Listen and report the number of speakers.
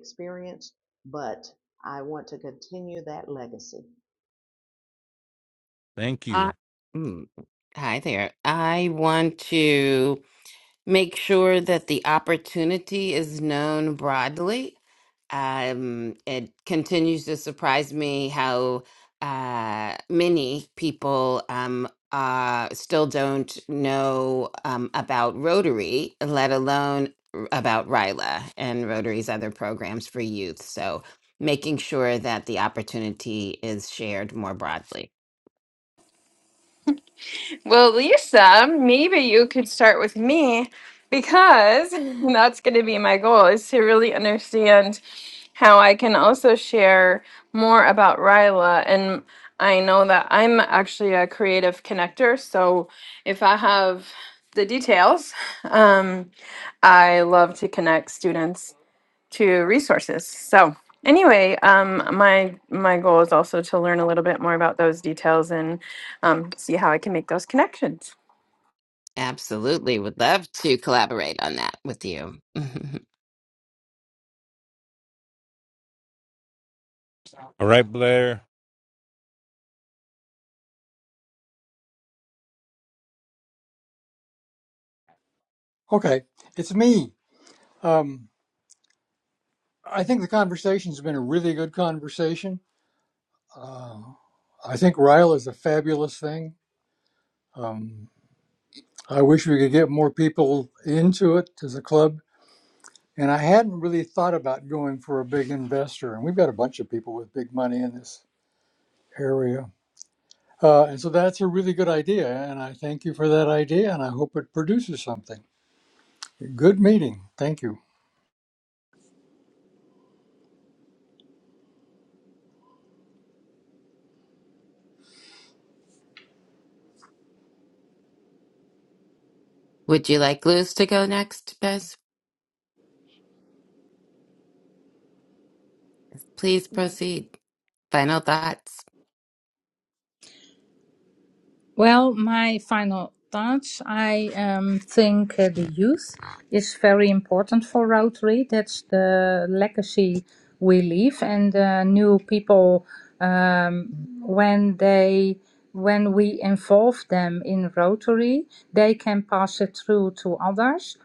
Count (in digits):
6